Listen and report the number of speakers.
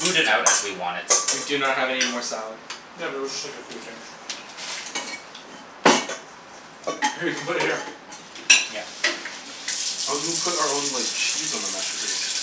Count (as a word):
four